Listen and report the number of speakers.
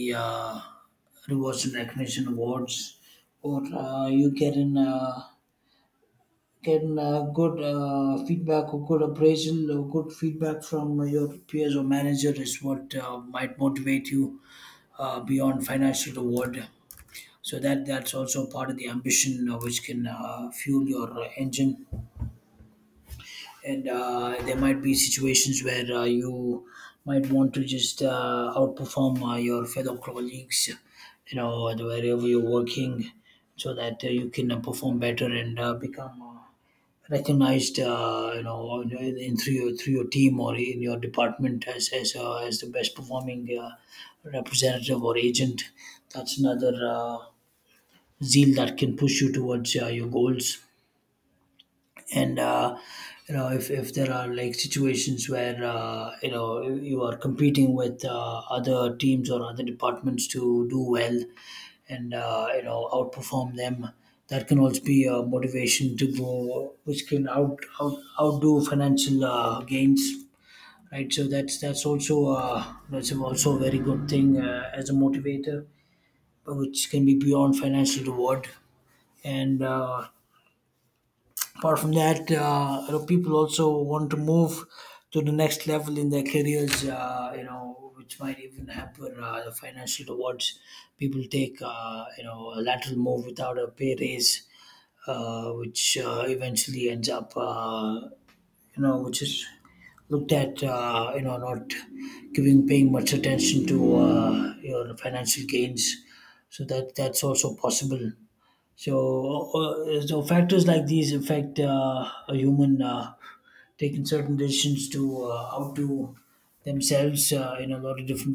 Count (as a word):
one